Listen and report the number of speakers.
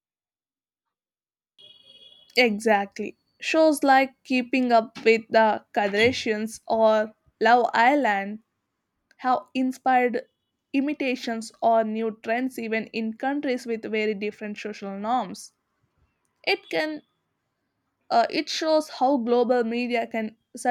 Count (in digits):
1